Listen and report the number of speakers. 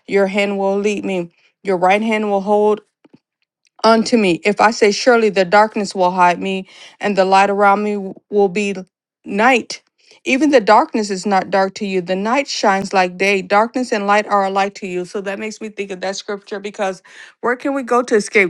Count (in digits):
1